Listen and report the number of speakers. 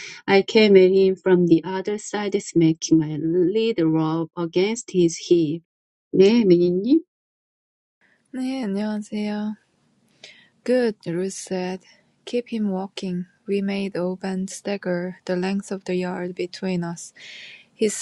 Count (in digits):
2